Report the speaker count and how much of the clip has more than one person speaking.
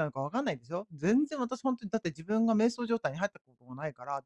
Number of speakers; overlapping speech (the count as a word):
one, no overlap